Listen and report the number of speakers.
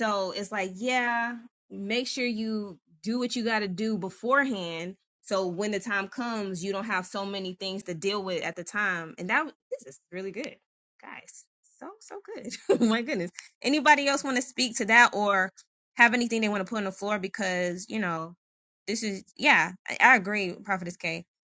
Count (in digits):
1